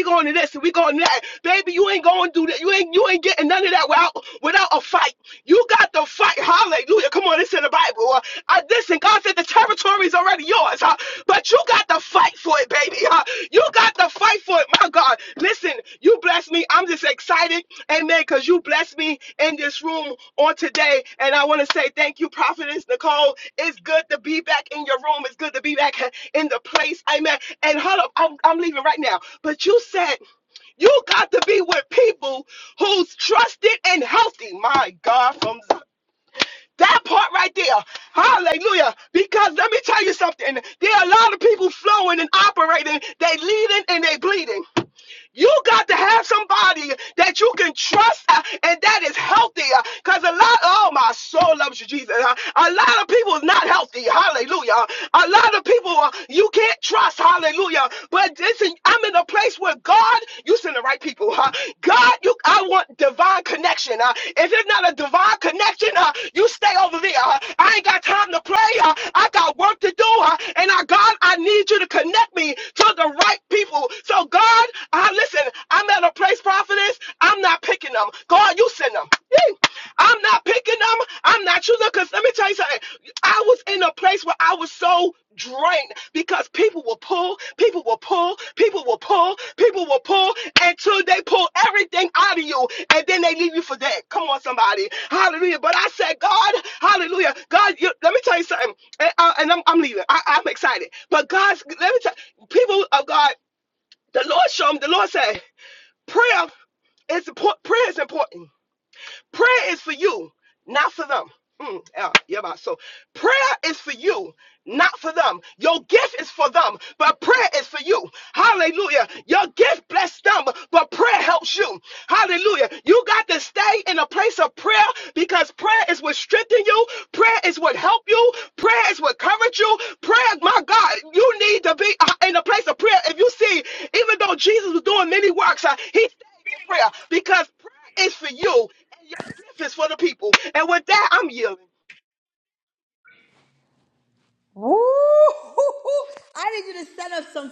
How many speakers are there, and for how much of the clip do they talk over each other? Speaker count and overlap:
2, no overlap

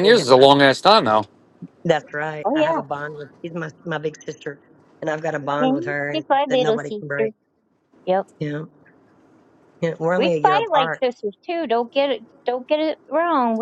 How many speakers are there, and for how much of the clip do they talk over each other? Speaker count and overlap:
3, about 25%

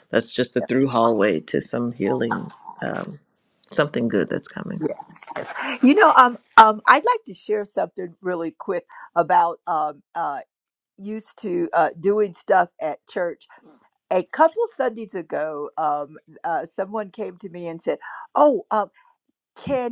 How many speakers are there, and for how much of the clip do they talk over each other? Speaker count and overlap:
2, under 1%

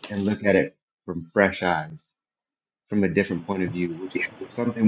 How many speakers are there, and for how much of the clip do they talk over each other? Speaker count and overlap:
1, no overlap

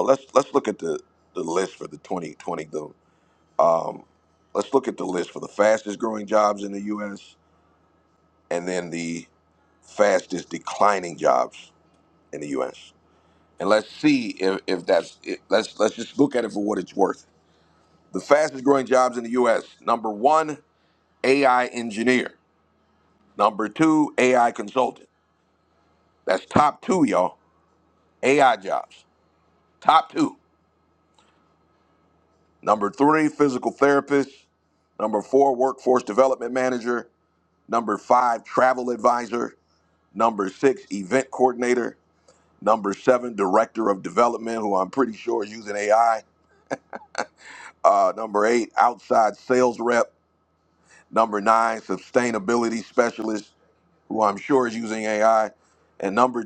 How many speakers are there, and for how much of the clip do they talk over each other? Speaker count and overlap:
1, no overlap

